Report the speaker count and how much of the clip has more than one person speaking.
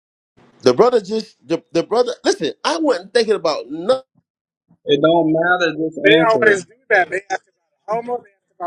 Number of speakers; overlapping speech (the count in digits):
3, about 6%